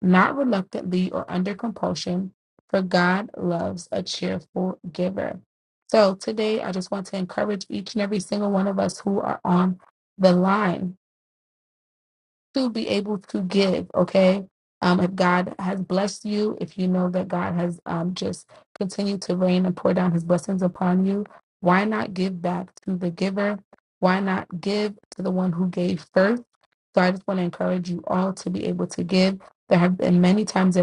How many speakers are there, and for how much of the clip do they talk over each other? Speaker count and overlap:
1, no overlap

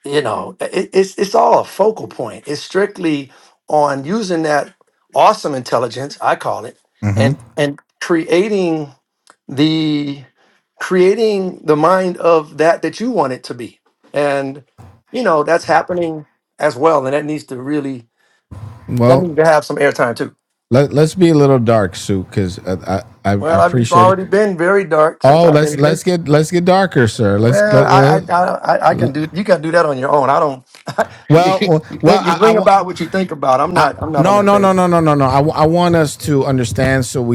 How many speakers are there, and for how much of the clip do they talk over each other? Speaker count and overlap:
2, about 14%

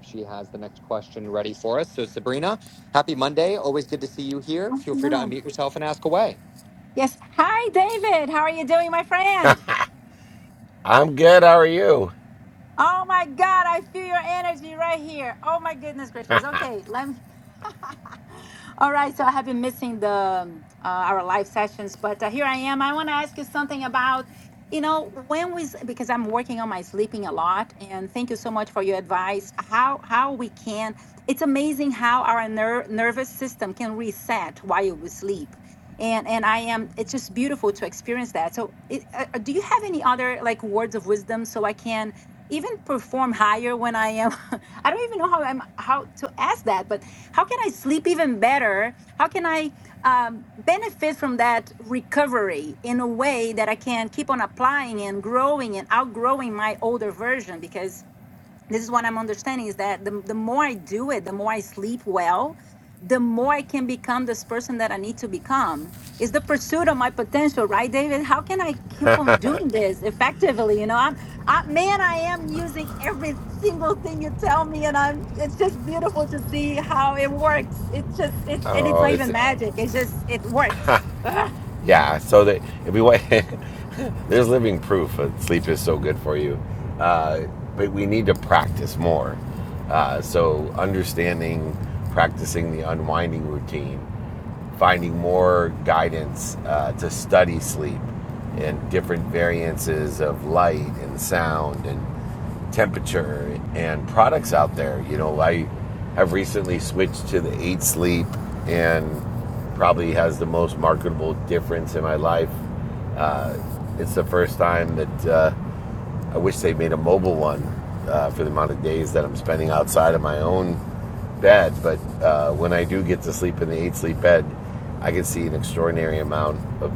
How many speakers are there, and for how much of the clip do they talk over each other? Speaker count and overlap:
3, about 1%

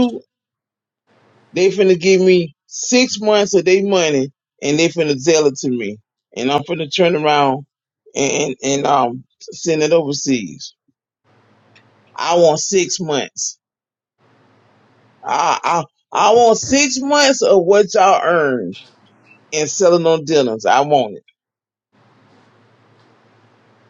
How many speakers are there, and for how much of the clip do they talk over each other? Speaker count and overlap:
1, no overlap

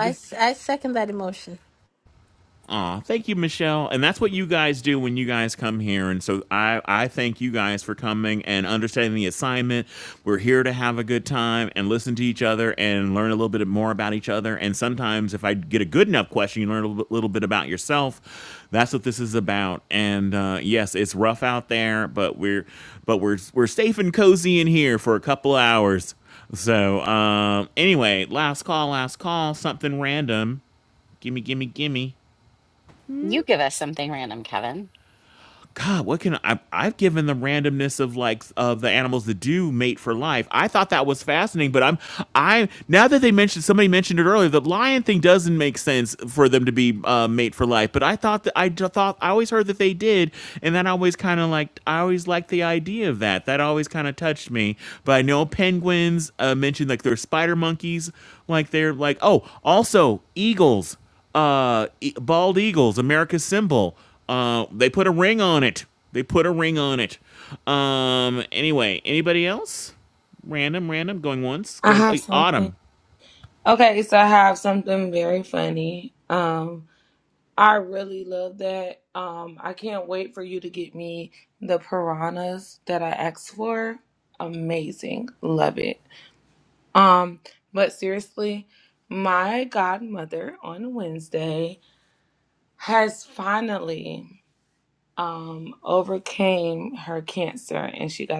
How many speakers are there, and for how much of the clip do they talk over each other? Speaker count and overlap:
4, about 1%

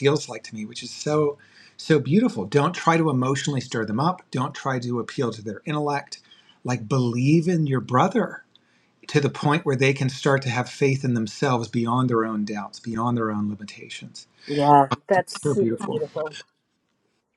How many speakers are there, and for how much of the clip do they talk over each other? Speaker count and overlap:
2, about 3%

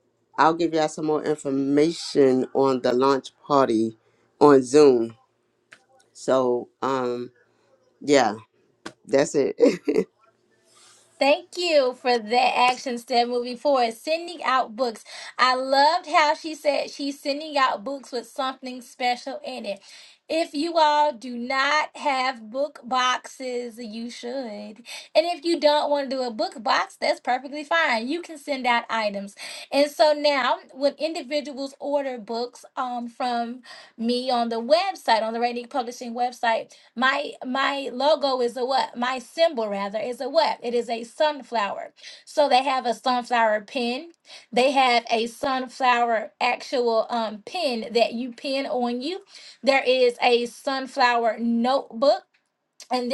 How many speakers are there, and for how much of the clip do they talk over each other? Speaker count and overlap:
2, no overlap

